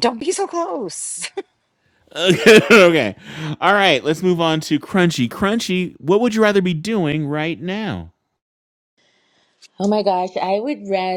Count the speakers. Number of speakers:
3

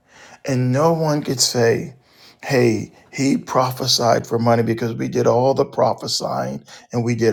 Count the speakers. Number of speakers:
1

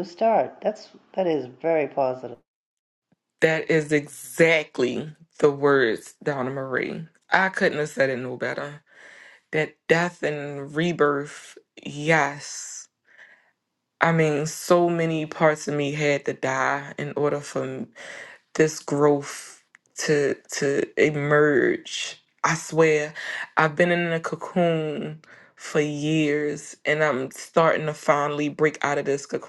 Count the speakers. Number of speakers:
2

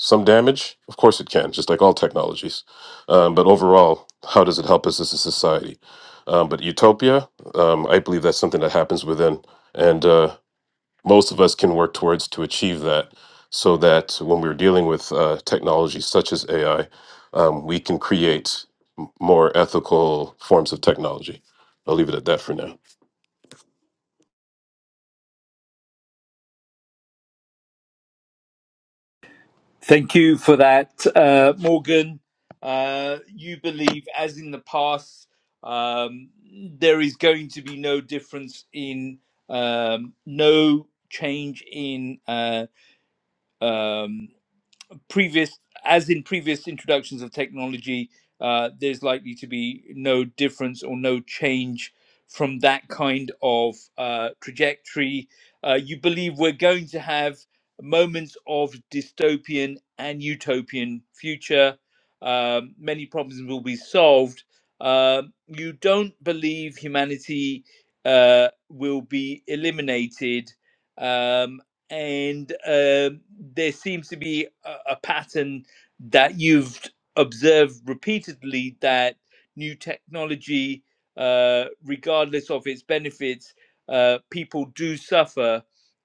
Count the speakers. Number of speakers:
2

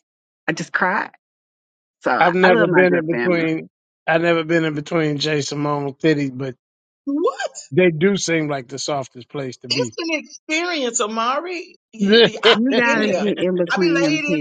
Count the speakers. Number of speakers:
3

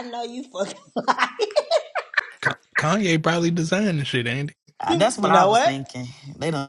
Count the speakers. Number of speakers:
3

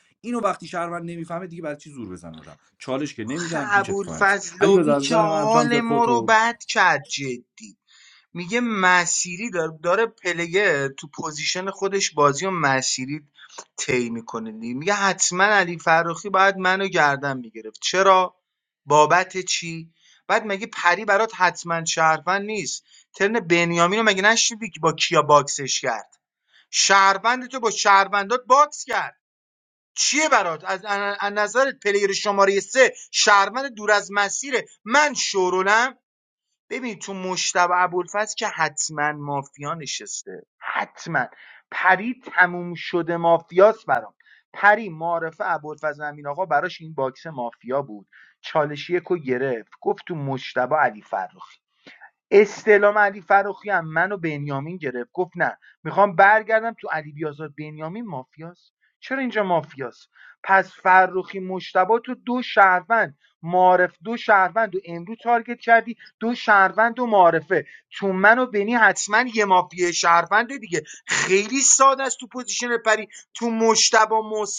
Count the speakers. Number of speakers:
2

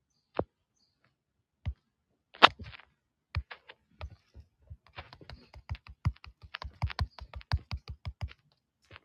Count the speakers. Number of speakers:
0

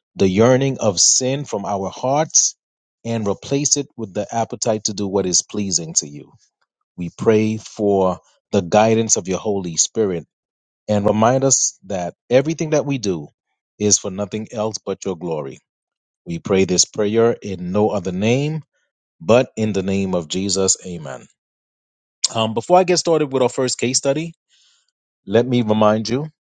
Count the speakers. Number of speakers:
1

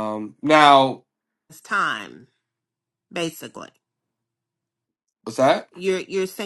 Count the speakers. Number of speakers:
2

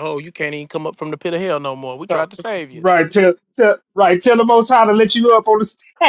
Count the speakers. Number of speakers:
2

